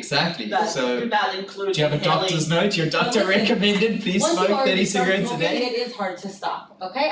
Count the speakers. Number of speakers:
3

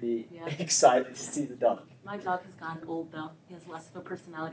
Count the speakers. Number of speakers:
2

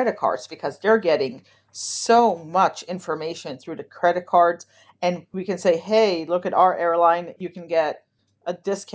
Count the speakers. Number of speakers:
1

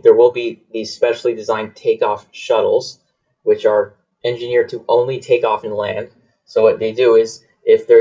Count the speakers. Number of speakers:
1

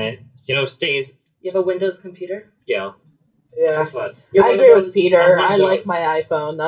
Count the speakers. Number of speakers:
3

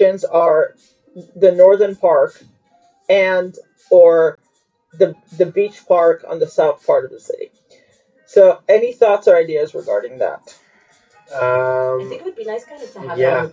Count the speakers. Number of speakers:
3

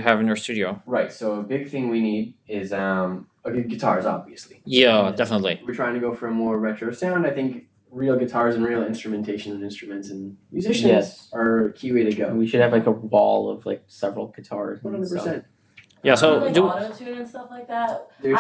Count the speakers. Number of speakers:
4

